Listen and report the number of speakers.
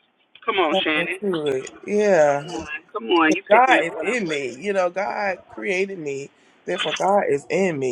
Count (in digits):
2